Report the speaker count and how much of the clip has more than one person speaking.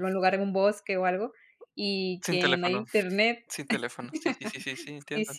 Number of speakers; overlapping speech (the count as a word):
two, about 17%